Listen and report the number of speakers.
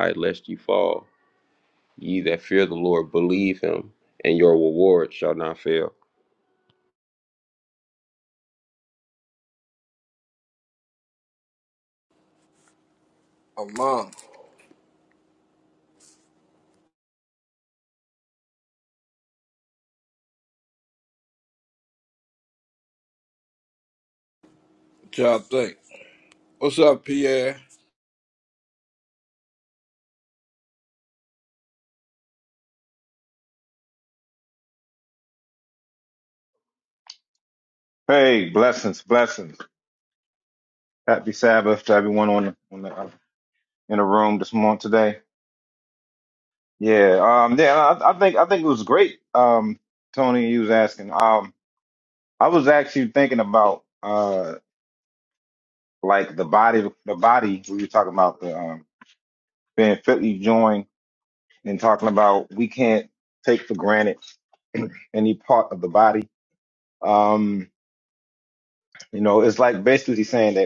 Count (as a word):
three